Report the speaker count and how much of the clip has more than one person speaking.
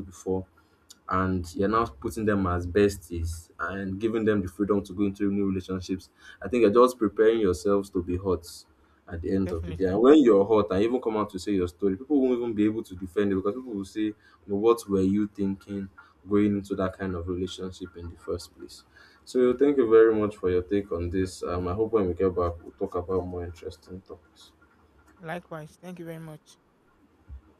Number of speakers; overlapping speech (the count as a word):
two, about 2%